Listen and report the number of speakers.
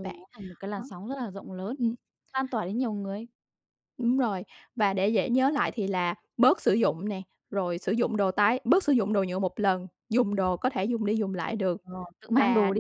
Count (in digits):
2